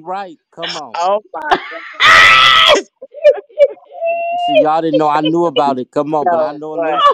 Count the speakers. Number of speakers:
three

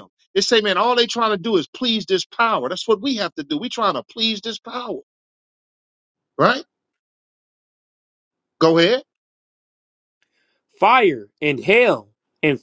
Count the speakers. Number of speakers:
two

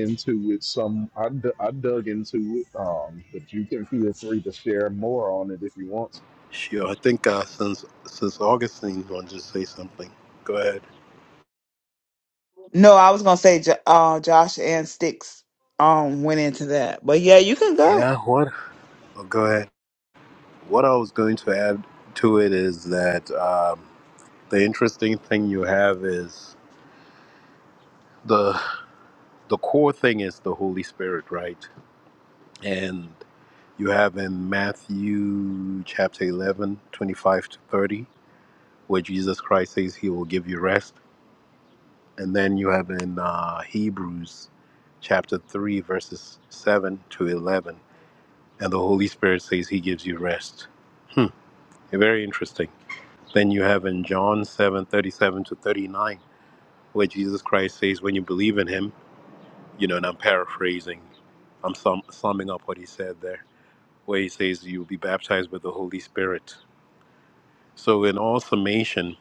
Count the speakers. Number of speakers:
three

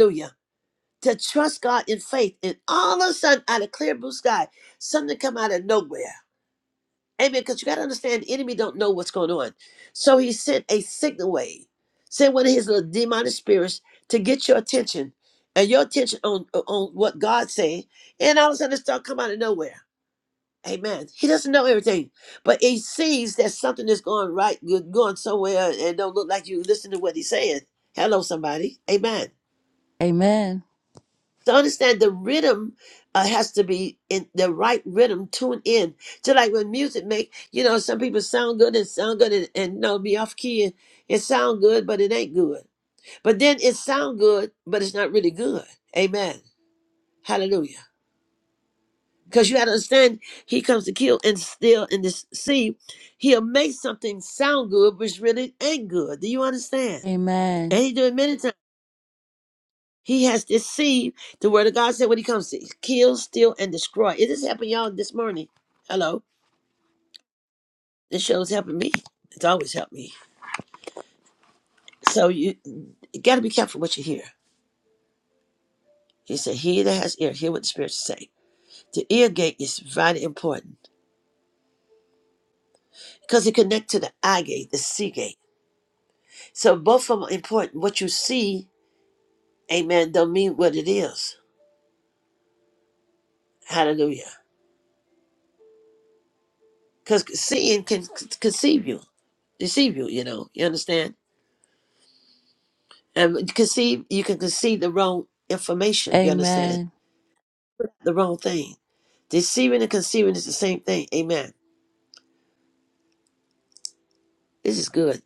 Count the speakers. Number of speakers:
two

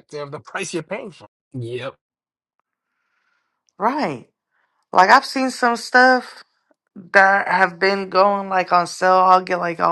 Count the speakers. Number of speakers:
two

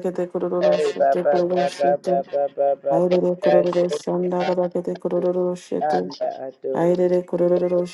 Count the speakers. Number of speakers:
two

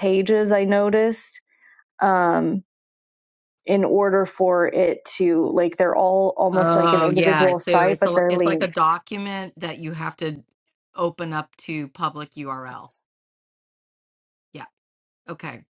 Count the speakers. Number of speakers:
two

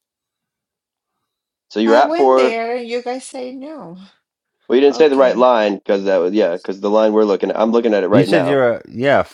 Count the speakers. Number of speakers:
three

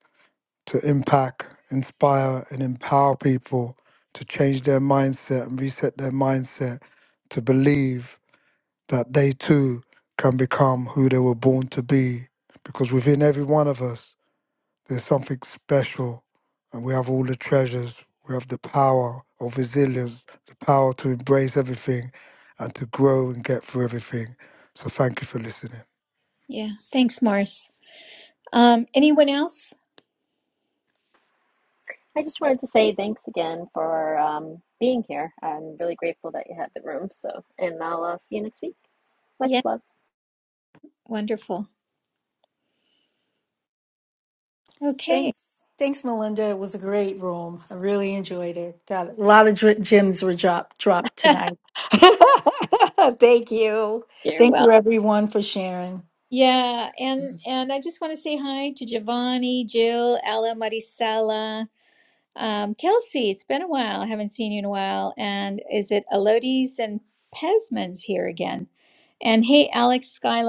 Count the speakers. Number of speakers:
four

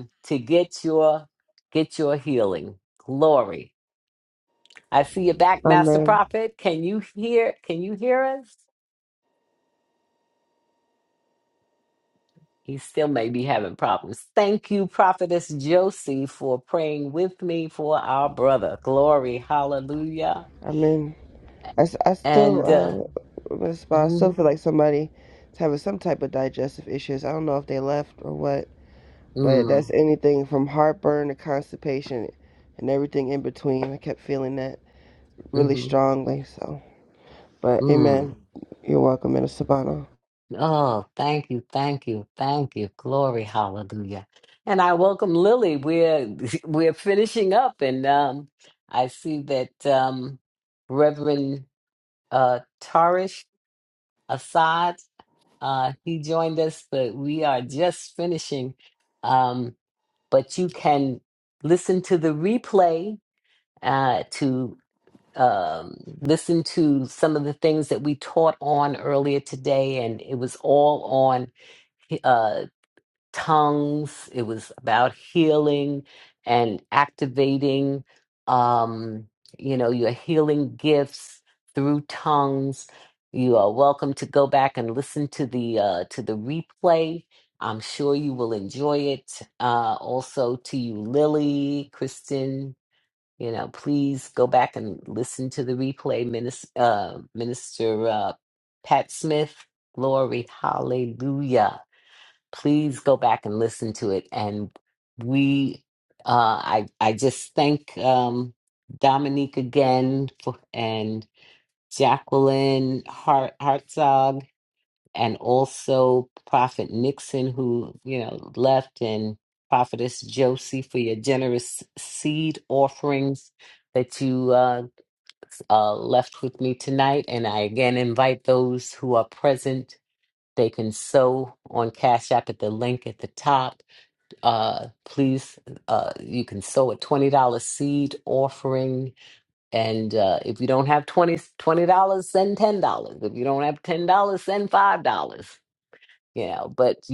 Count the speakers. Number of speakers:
two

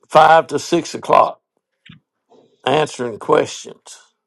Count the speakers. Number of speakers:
one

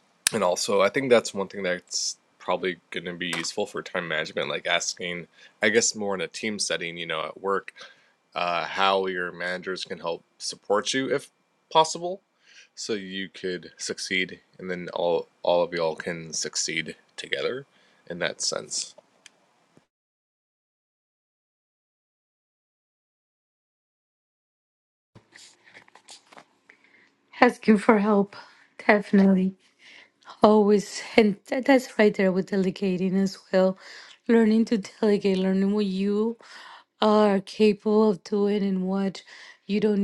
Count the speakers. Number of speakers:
two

